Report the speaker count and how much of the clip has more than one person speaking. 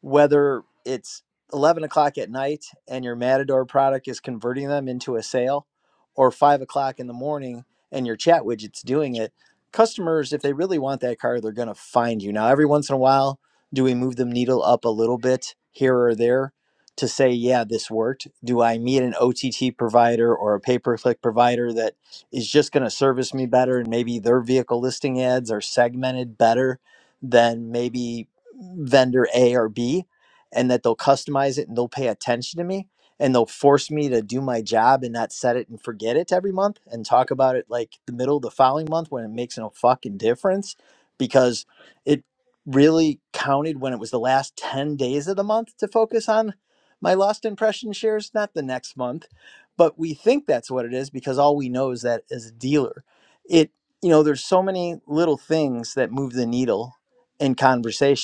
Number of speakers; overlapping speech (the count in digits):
1, no overlap